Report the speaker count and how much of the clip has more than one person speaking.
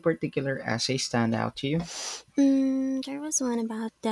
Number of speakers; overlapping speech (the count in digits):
2, no overlap